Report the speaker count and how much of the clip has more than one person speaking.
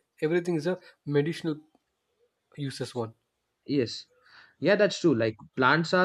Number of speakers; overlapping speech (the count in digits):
2, no overlap